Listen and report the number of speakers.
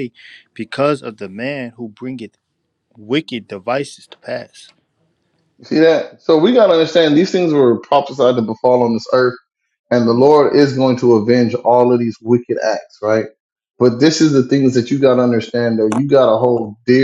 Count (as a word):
two